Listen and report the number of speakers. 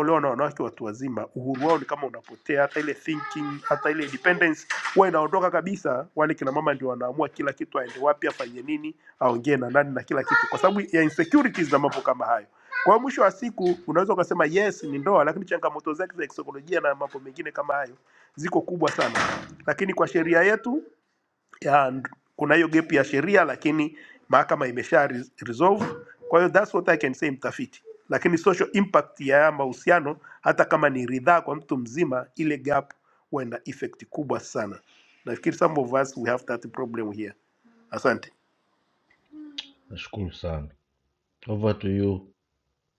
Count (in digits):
2